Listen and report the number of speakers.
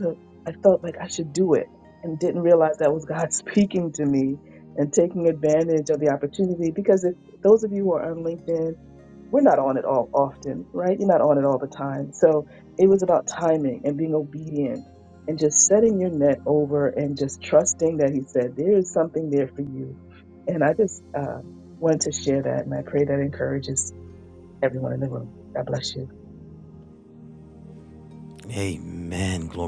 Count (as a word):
two